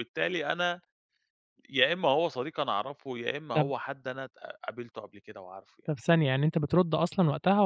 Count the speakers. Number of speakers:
two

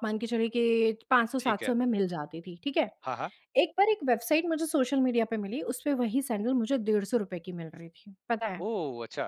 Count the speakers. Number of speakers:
two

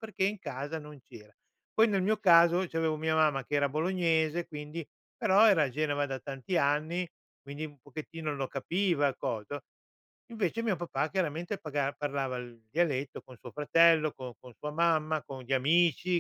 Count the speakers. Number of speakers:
one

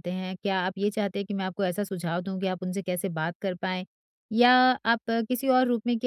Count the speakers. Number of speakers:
one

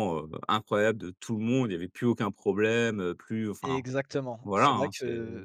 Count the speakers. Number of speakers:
two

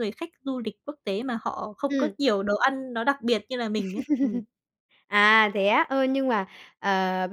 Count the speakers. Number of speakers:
two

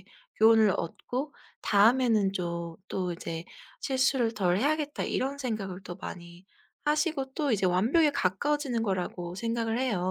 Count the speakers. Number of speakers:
one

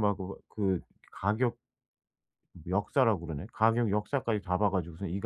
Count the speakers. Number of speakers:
one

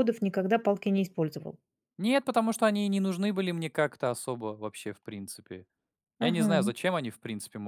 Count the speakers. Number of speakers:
two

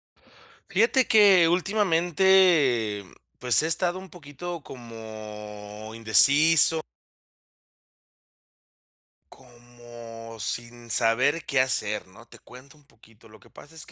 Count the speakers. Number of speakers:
one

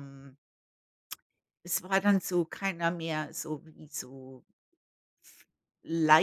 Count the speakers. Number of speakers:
one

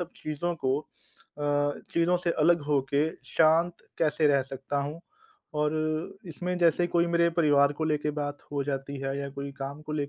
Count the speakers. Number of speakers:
one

